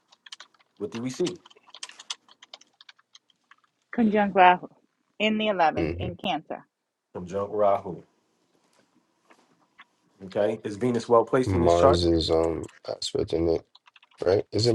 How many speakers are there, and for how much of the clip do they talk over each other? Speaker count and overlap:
3, about 5%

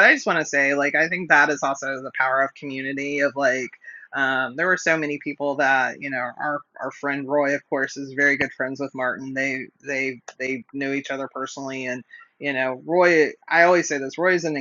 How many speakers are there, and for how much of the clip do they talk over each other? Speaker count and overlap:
1, no overlap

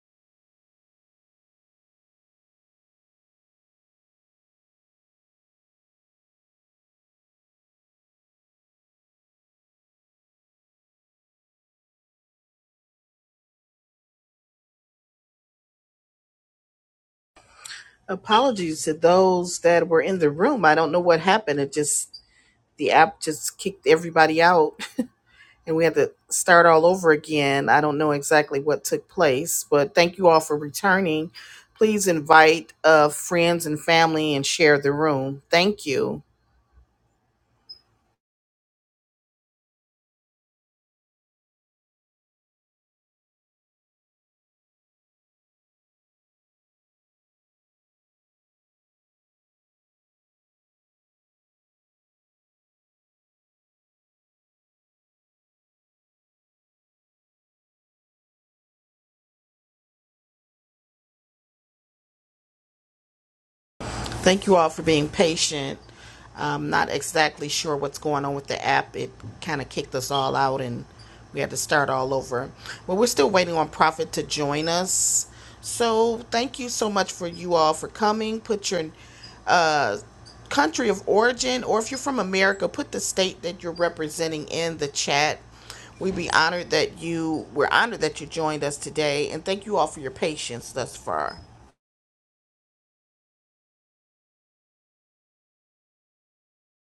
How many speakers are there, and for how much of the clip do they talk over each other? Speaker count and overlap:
1, no overlap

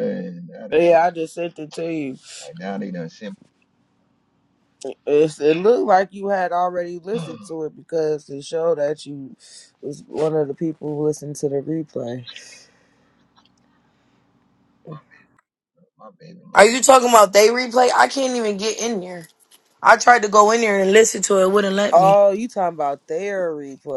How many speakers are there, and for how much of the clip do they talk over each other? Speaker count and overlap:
3, about 3%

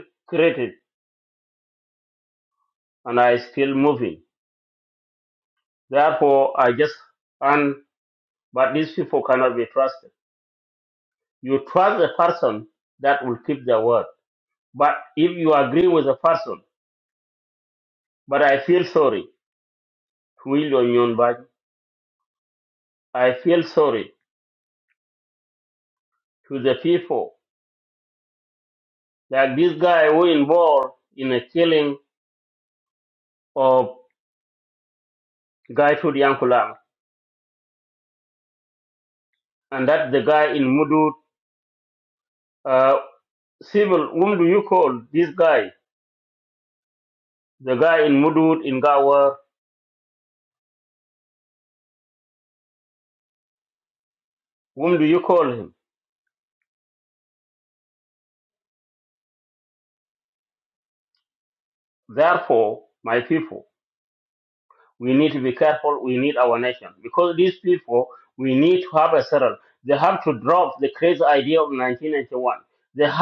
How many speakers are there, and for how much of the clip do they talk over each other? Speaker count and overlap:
1, no overlap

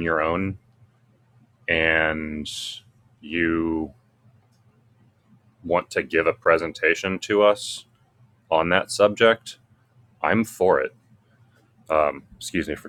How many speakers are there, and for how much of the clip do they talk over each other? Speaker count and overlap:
1, no overlap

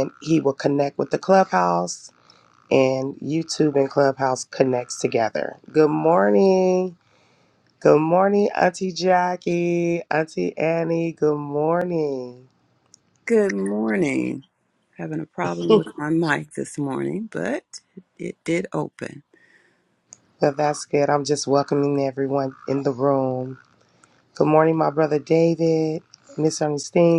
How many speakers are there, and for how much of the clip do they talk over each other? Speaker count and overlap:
2, no overlap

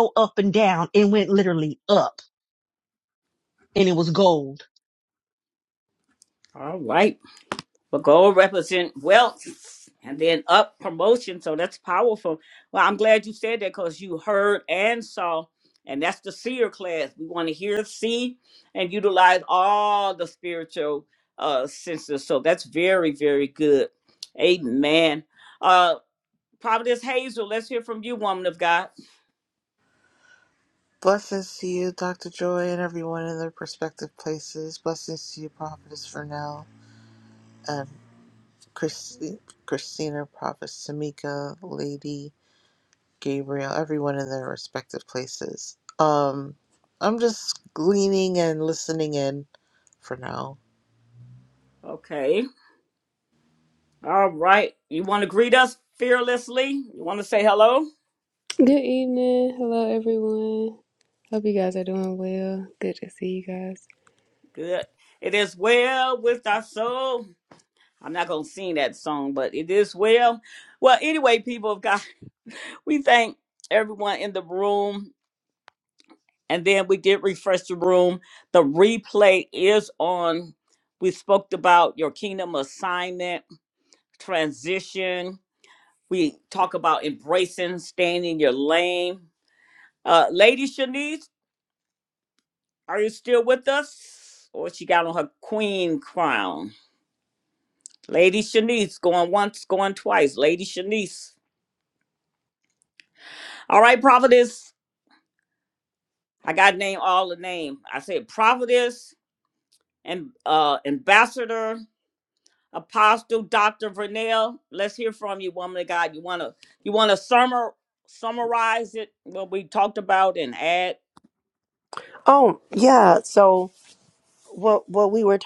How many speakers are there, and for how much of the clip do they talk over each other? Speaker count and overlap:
5, no overlap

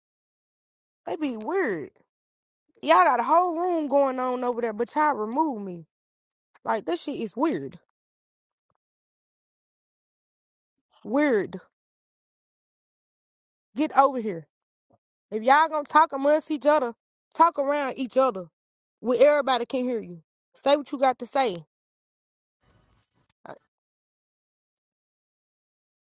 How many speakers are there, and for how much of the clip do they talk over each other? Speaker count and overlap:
1, no overlap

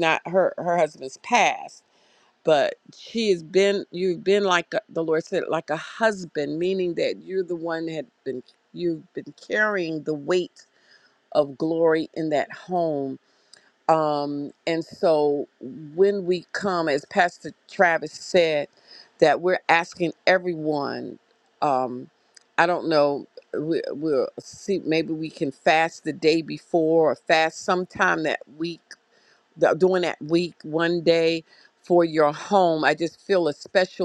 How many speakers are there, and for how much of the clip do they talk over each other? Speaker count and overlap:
1, no overlap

